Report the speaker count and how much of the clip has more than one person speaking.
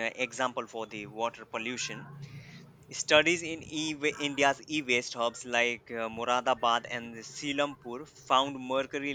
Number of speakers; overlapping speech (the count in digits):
1, no overlap